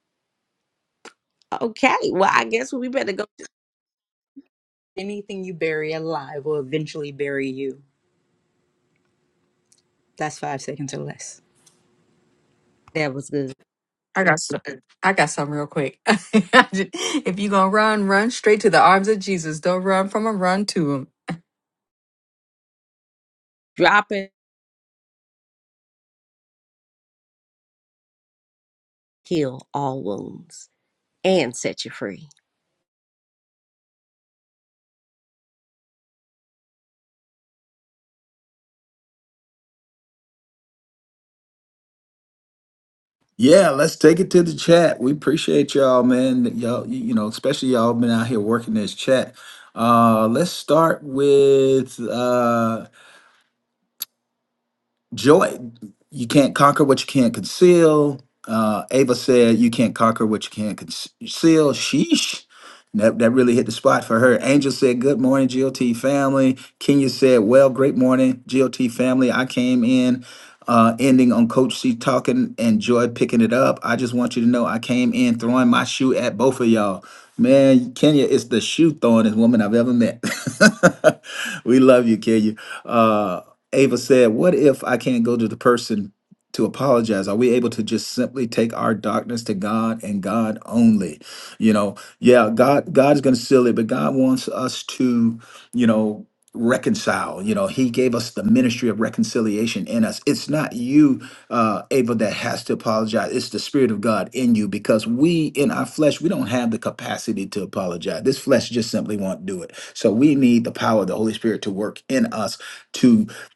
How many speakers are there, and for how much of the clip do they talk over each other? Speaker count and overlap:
four, no overlap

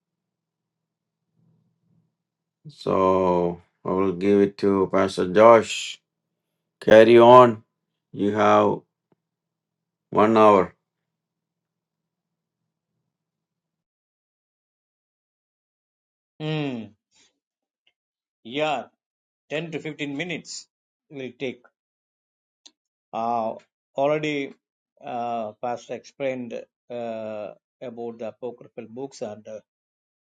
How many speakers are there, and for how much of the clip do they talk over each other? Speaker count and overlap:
two, no overlap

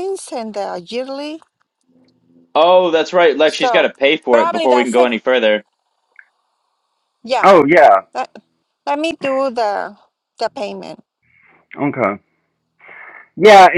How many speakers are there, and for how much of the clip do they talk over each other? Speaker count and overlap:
three, about 8%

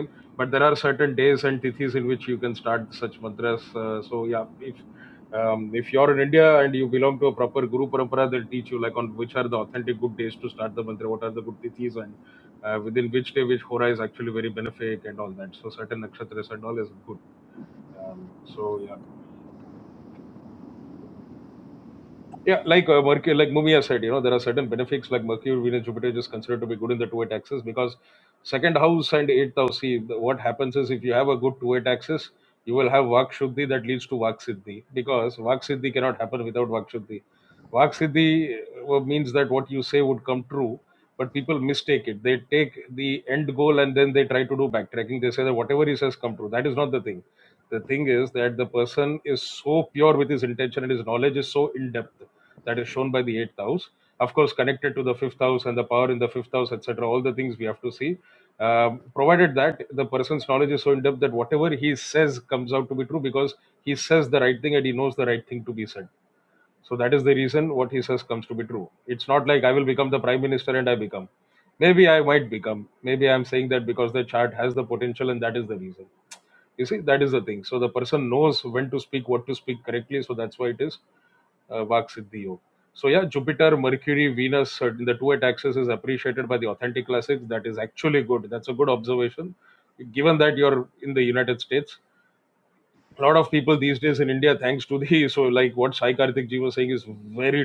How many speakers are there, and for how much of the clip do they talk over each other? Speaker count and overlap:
one, no overlap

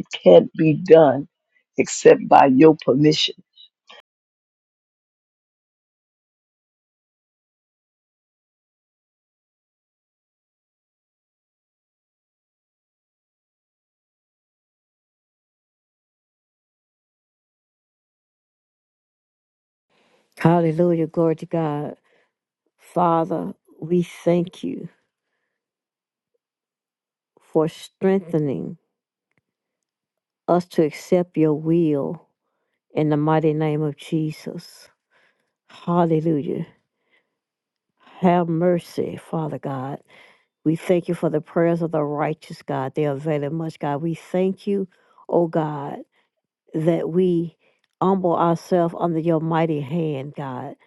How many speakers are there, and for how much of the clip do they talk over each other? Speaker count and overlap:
two, no overlap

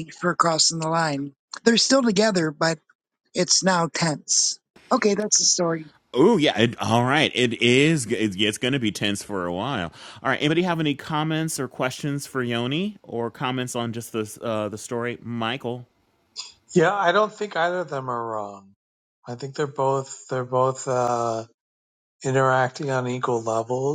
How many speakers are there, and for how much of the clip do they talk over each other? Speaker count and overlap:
three, no overlap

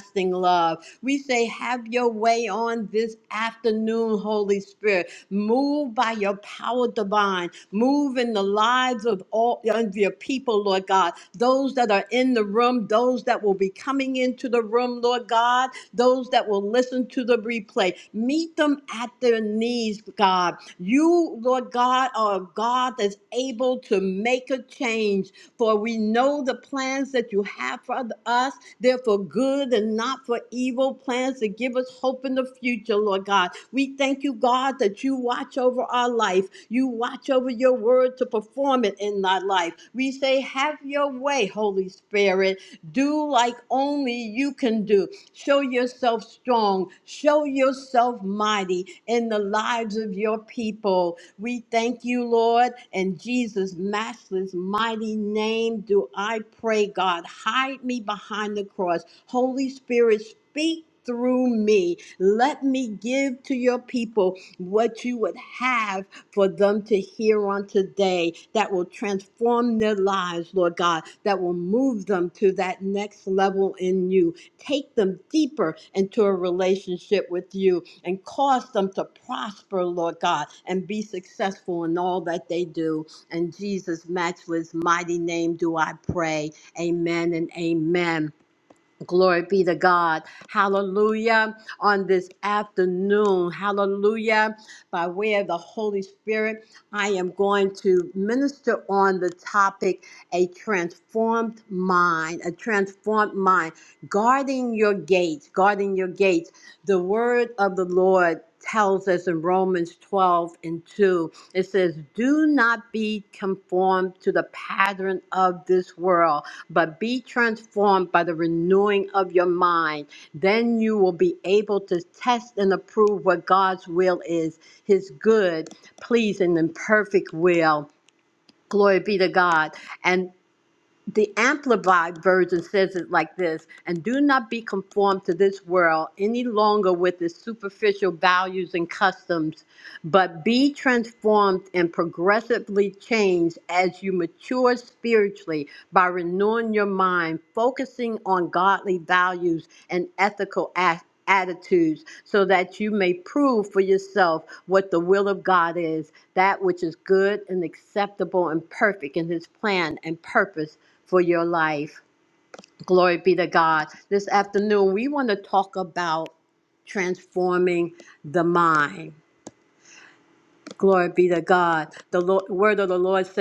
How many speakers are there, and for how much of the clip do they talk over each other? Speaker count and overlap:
one, no overlap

